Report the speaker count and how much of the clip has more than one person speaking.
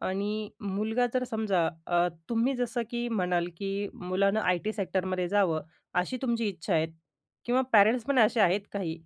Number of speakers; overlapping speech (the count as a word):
one, no overlap